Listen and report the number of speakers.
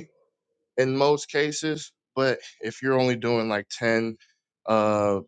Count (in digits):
1